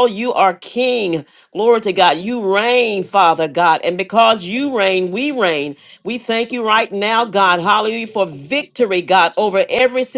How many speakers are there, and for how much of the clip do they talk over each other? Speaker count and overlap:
1, no overlap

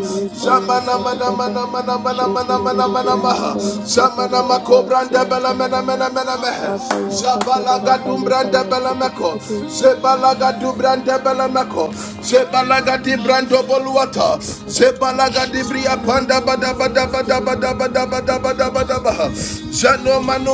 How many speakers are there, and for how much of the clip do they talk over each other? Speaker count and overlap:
2, about 52%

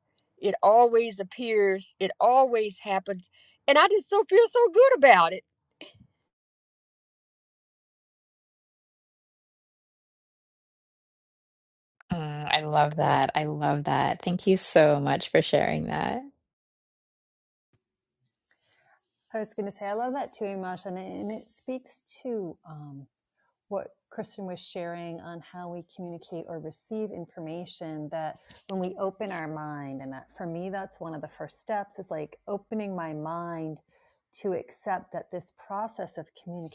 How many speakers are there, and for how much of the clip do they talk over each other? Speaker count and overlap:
3, no overlap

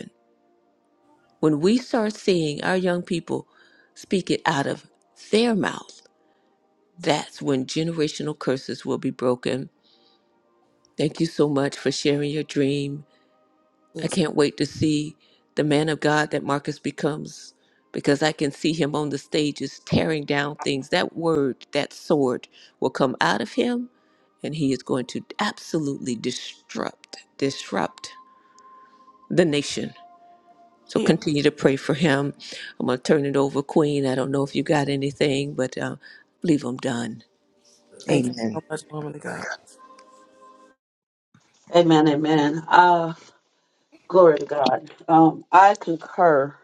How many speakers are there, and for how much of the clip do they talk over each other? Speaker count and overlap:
3, about 2%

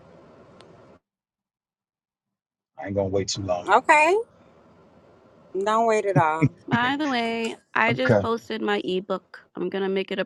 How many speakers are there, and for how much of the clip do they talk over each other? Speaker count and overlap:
3, about 4%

